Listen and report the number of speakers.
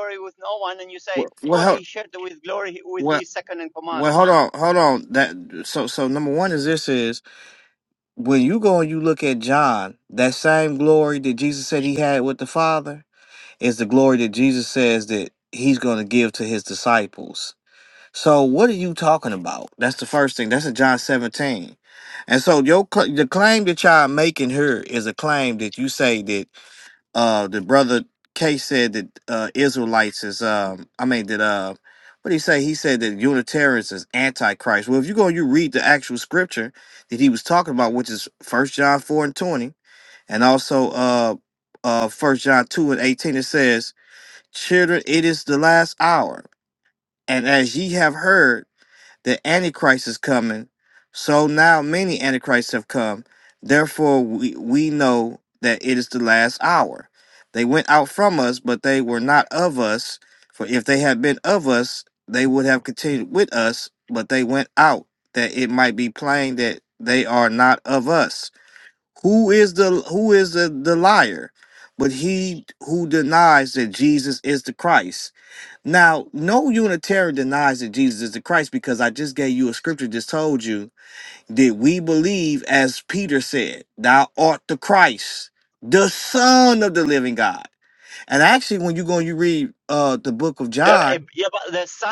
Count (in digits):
2